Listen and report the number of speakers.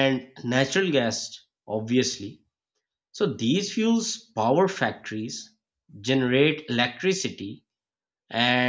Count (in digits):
1